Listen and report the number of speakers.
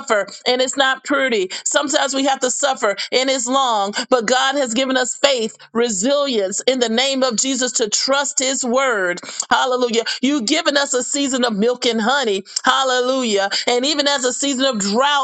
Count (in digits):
1